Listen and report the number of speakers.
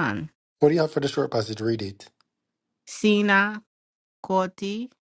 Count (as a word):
two